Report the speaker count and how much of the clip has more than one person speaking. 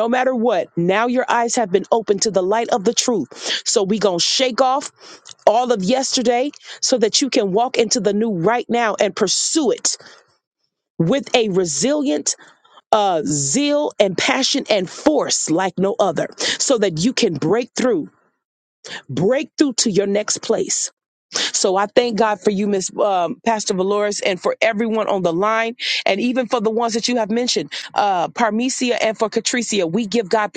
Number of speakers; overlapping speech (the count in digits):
1, no overlap